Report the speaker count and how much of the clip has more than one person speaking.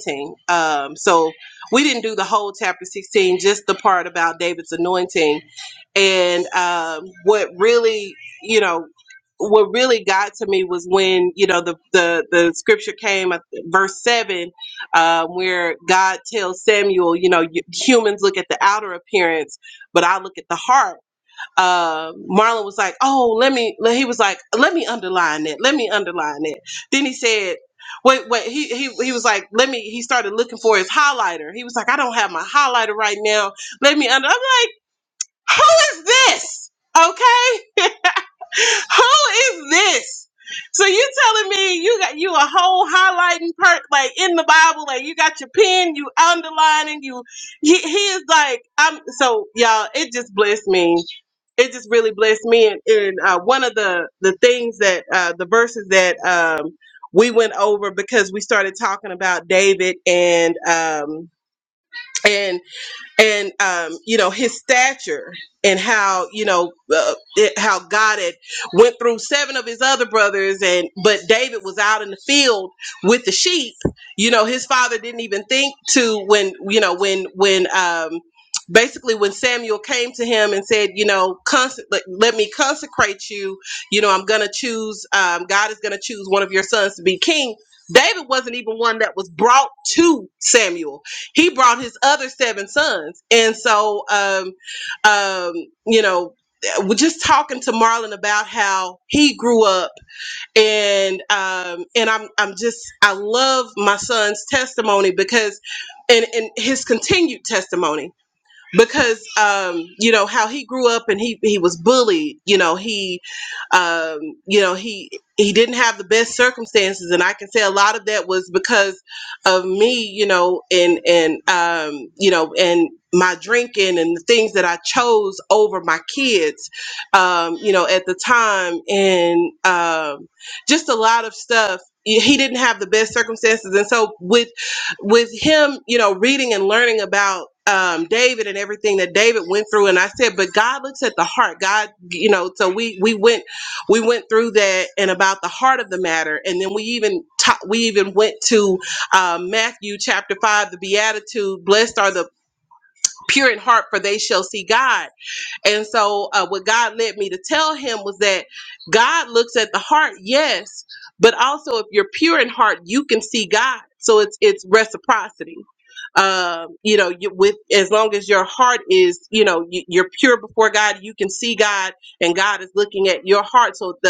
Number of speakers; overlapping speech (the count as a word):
one, no overlap